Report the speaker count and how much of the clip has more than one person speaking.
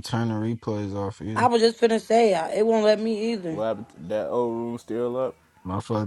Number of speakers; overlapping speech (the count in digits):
3, about 3%